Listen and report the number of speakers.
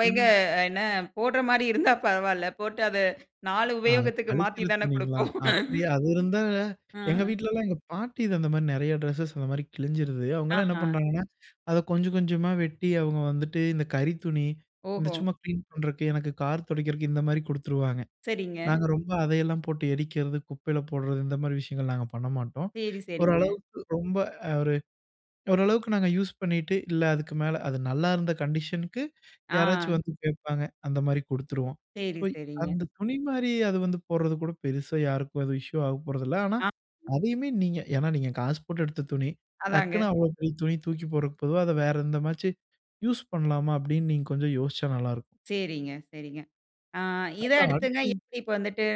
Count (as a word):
two